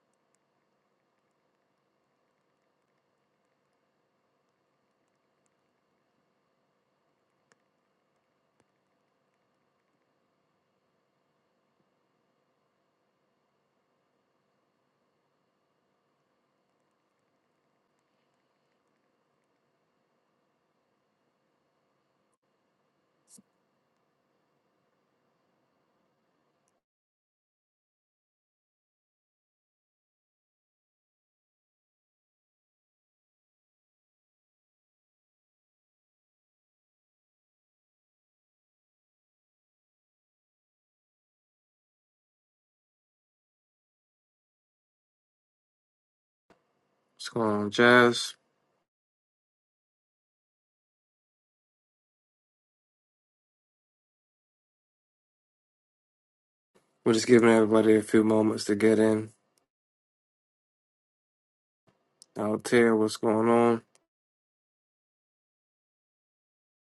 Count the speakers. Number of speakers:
1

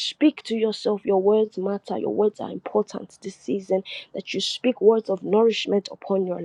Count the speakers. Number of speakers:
1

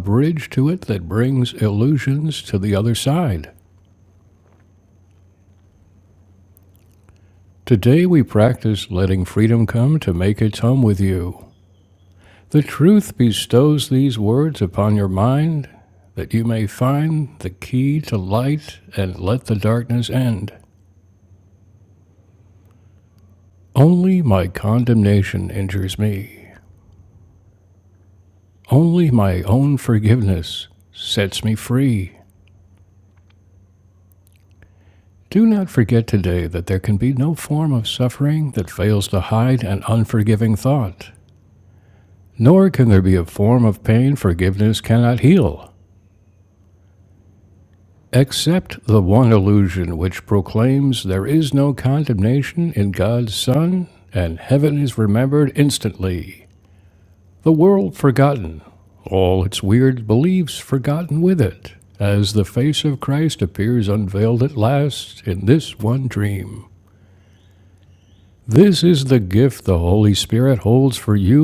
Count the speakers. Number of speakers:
1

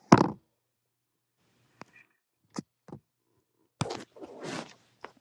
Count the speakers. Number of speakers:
0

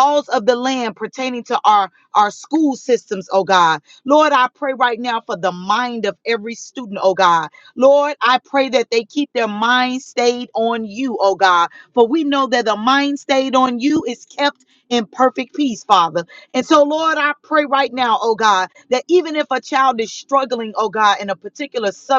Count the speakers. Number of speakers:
1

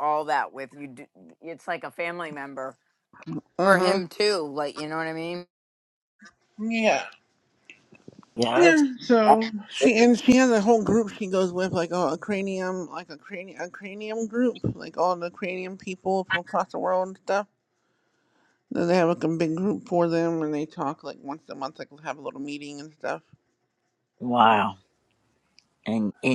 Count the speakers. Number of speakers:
3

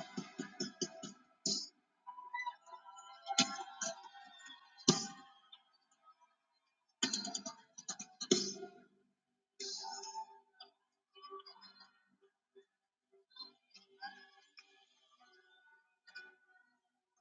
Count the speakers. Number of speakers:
0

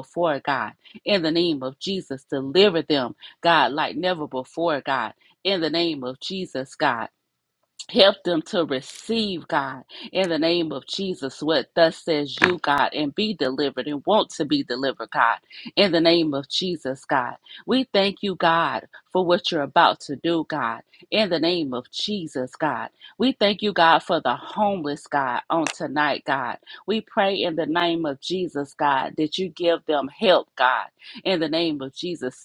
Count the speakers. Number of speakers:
1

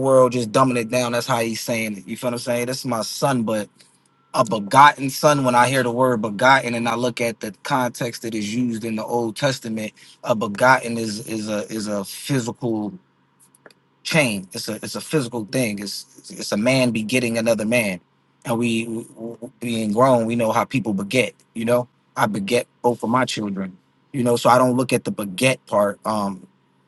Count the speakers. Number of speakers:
1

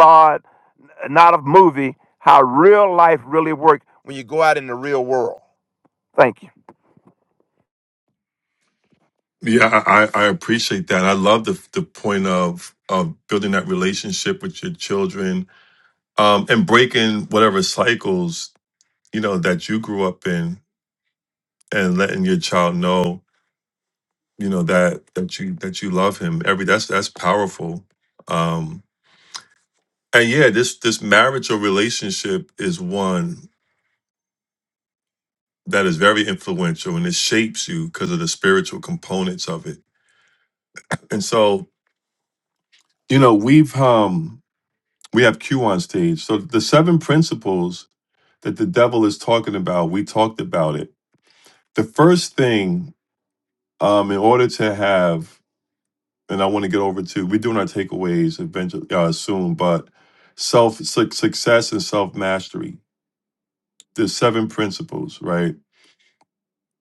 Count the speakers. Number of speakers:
2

